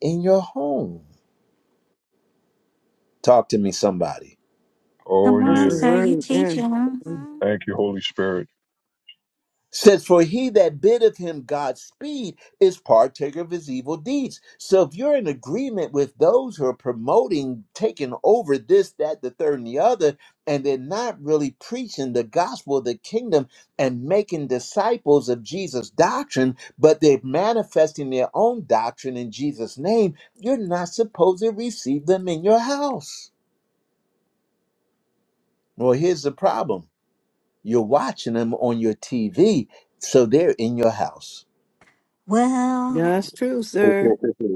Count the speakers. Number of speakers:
4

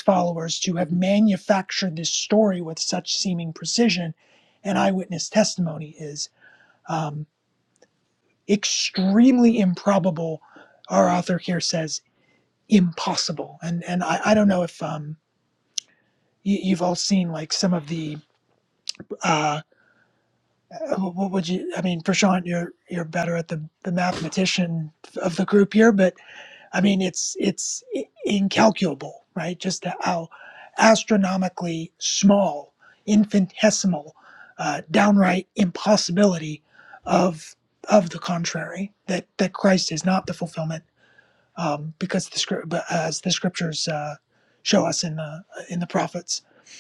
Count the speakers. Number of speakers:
1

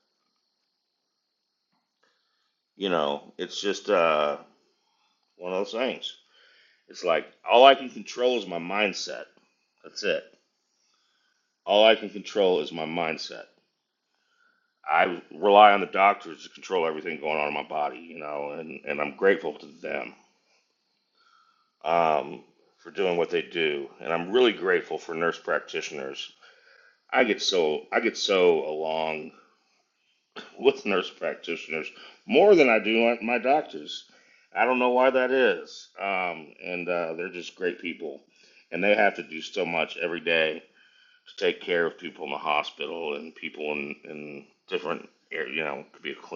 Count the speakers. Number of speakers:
1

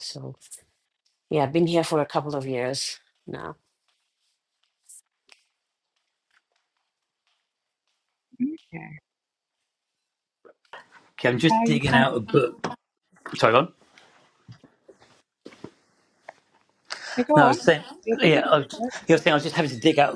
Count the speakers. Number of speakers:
3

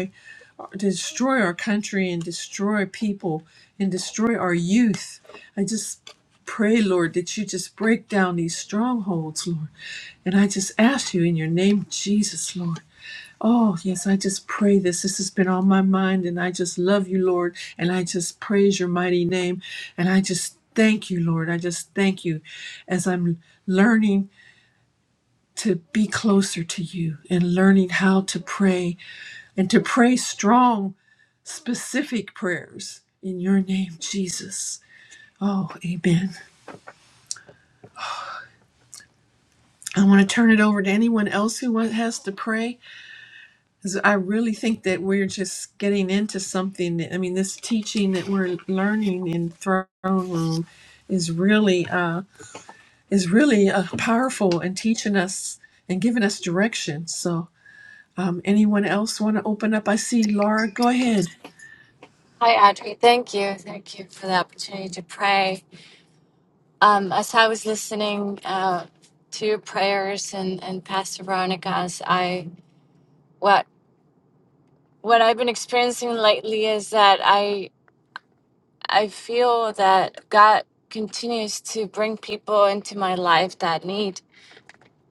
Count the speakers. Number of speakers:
2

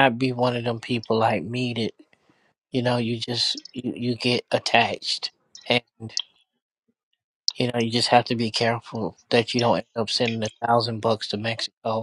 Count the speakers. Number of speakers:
1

